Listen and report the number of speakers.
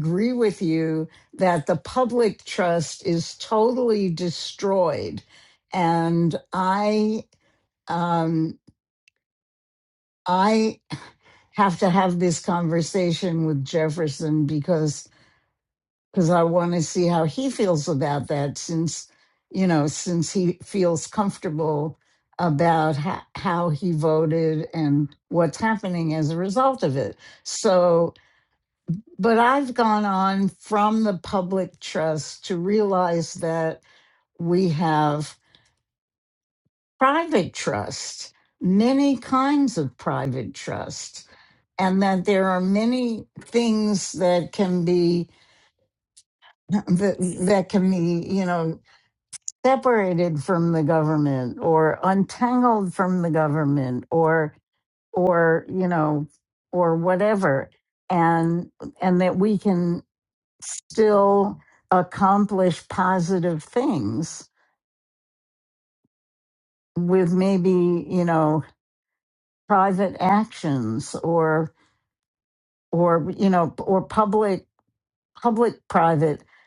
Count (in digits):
1